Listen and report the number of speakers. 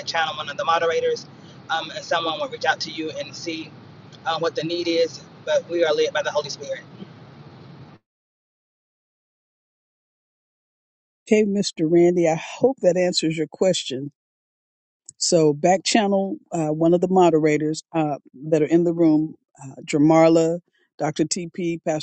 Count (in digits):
2